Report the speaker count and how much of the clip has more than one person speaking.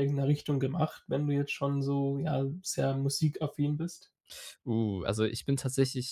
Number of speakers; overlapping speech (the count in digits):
2, no overlap